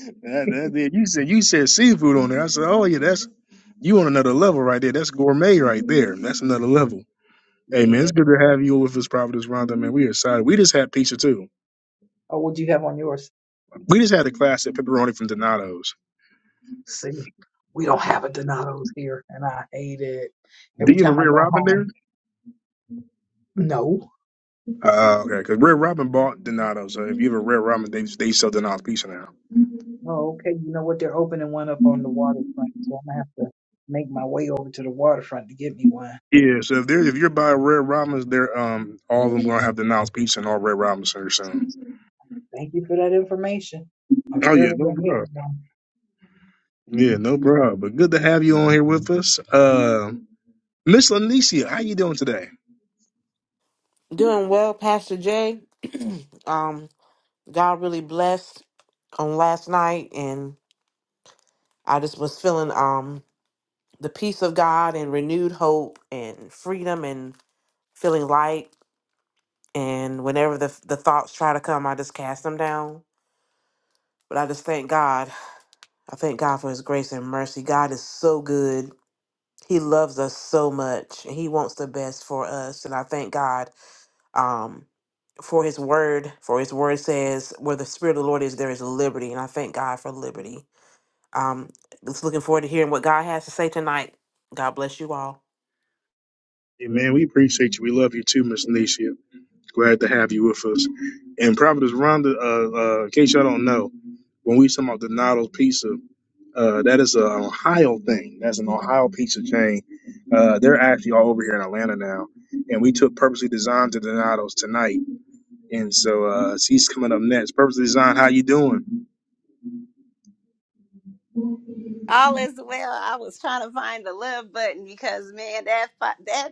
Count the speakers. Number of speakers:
four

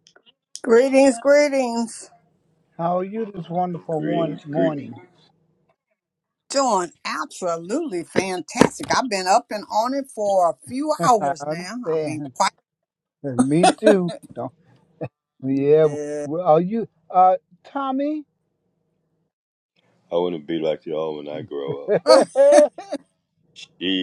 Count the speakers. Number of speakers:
three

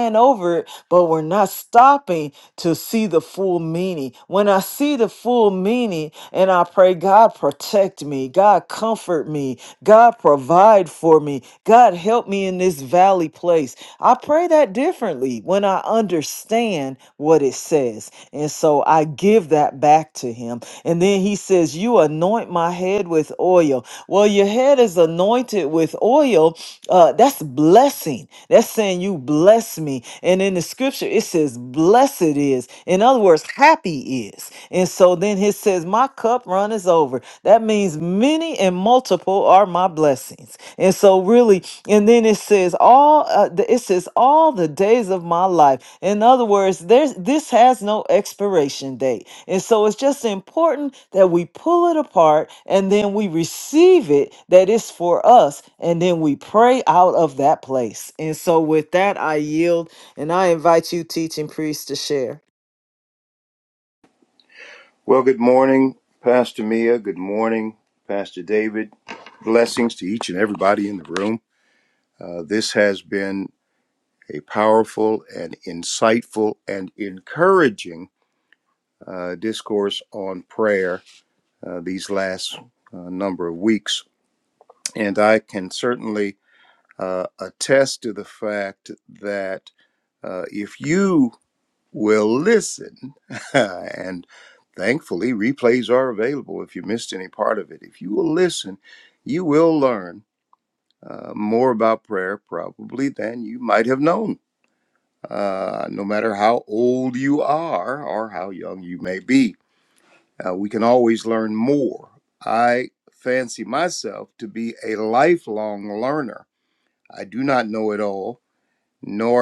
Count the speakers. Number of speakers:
two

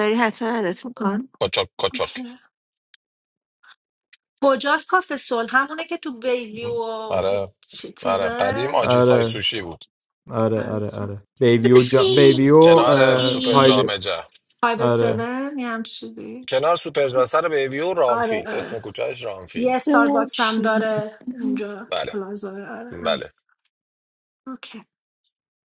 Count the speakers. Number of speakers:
four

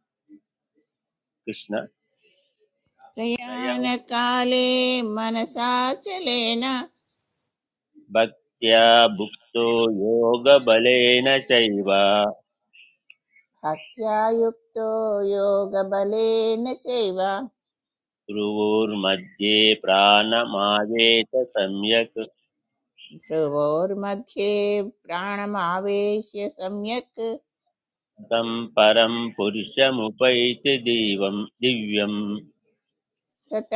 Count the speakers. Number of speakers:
two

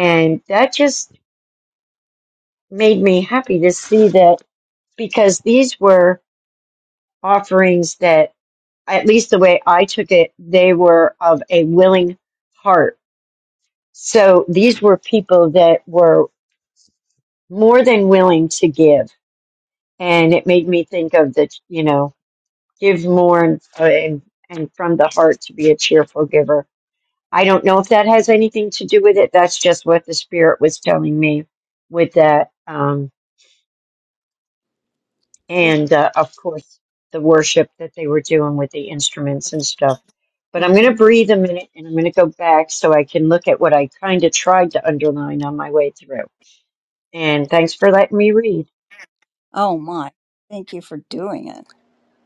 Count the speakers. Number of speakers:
two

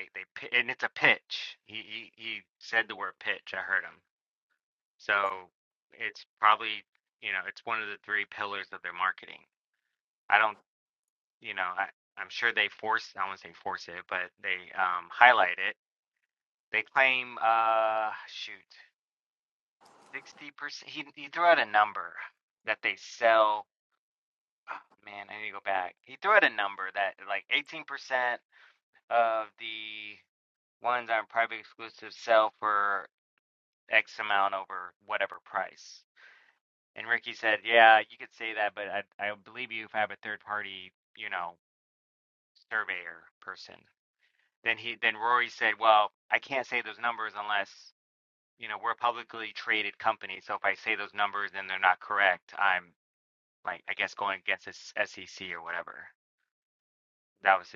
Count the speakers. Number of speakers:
one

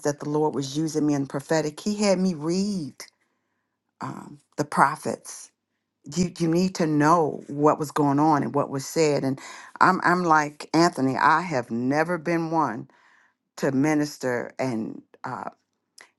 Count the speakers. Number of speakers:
one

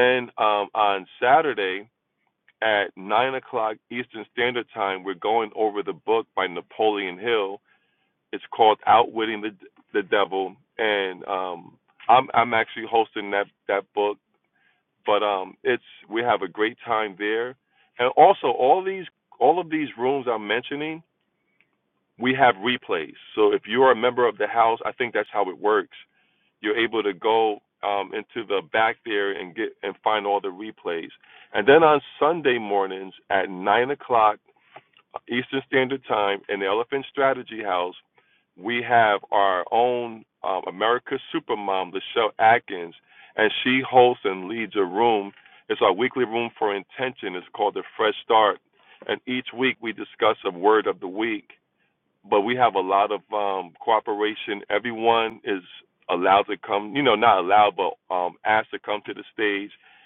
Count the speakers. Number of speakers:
one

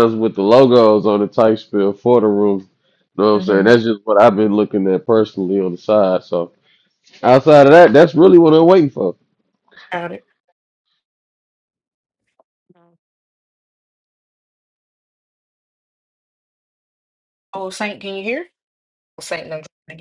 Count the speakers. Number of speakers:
two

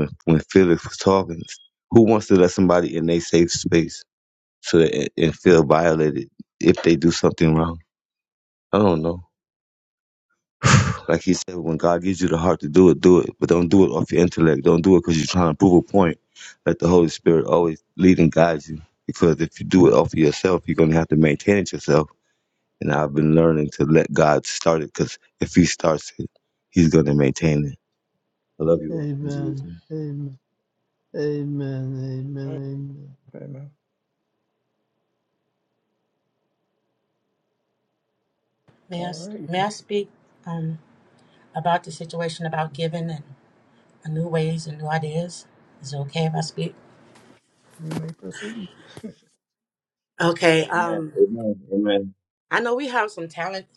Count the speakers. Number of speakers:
four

